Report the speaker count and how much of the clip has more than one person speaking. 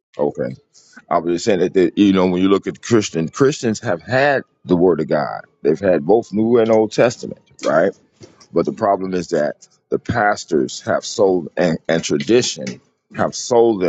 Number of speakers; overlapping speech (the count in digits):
1, no overlap